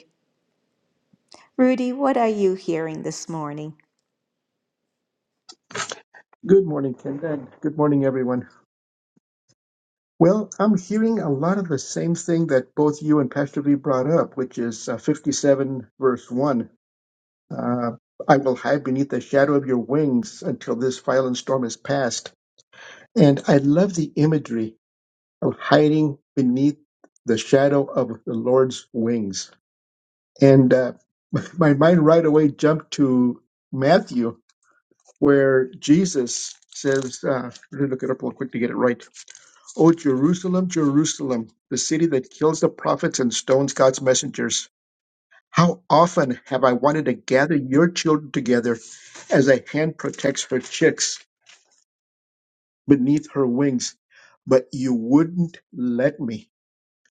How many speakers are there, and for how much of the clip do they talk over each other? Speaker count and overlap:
two, no overlap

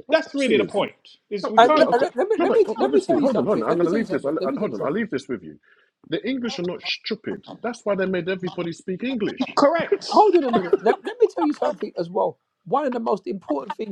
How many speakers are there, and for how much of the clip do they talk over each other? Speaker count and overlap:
three, about 29%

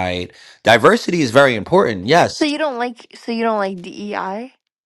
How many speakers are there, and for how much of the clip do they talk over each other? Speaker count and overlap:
two, no overlap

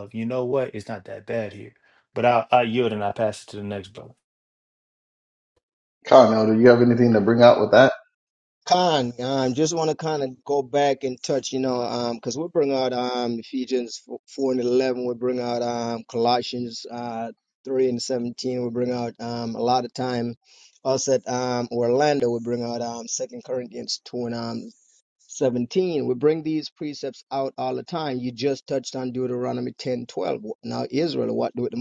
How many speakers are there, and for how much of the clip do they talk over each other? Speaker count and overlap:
three, no overlap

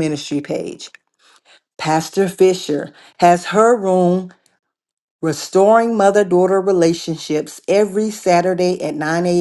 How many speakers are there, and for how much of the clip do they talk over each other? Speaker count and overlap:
one, no overlap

